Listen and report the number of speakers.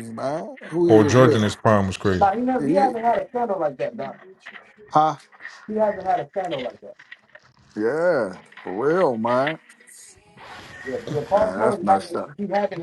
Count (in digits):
3